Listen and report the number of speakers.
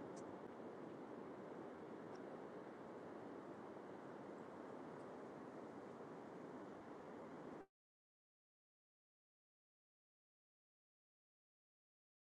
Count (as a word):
zero